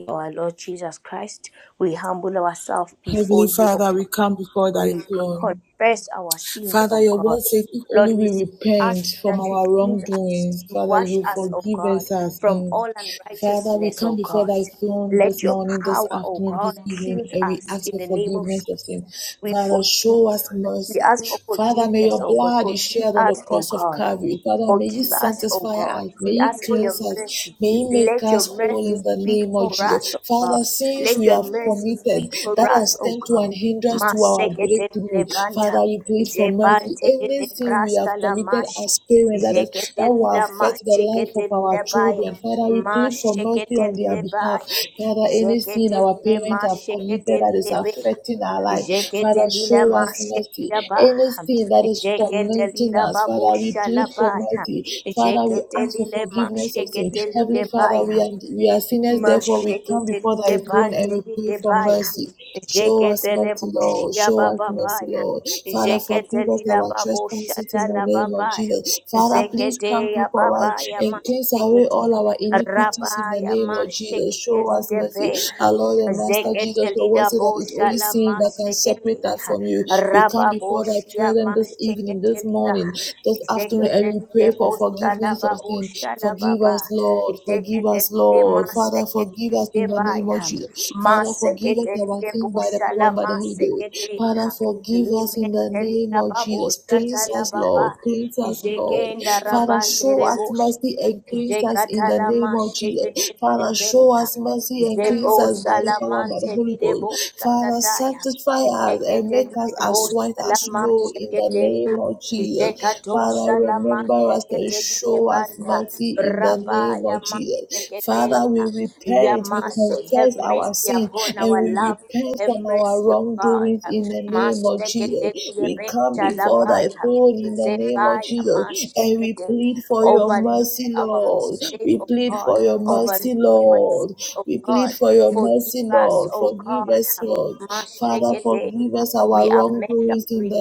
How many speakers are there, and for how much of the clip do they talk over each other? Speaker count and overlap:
two, about 74%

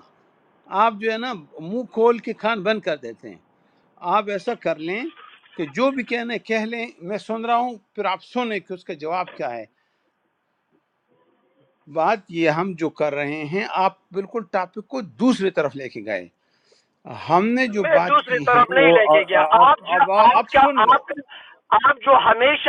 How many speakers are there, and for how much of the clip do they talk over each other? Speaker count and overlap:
two, about 14%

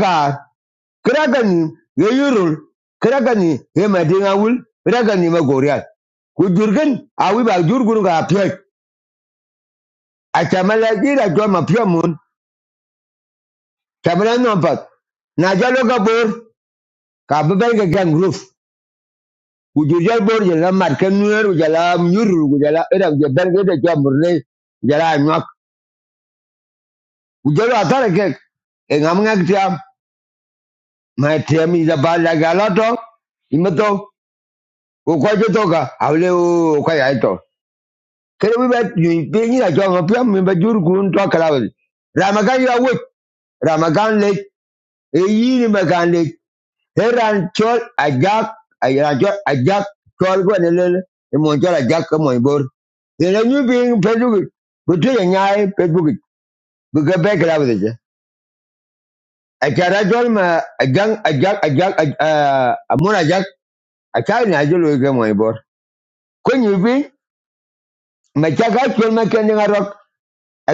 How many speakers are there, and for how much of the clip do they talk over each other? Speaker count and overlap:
one, no overlap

